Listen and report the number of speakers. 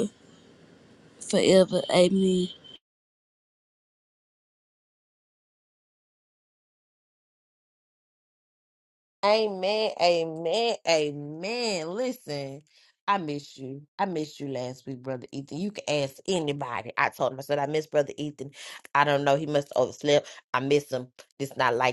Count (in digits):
2